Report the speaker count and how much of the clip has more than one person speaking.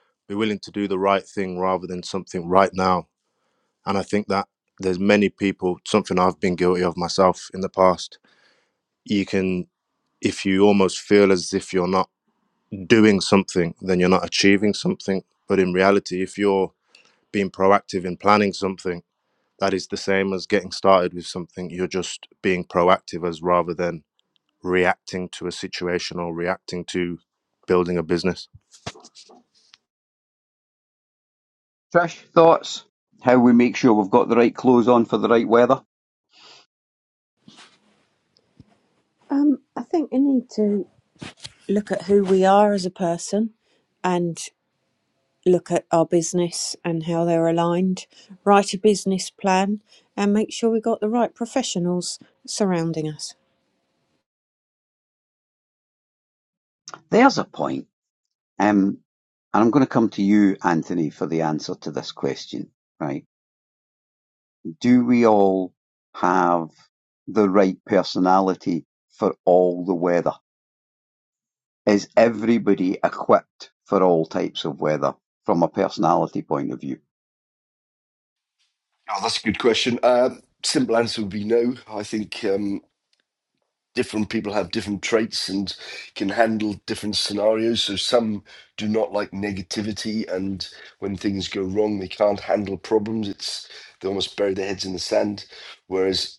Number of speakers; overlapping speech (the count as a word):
four, no overlap